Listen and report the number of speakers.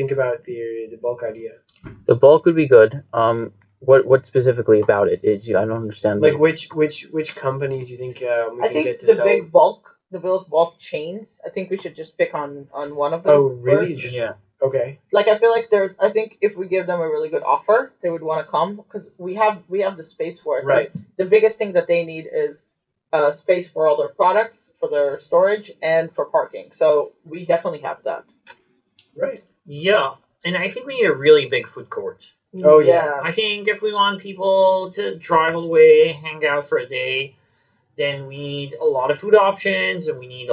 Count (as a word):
four